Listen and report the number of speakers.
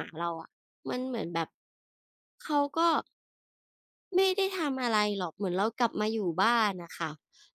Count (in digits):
1